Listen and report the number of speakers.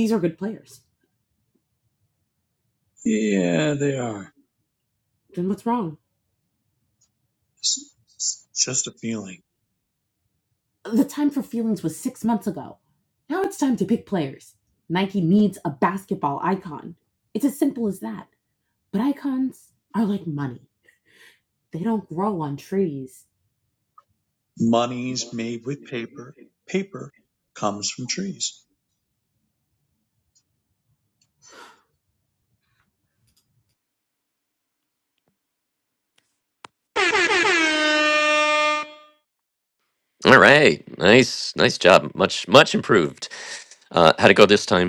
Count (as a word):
three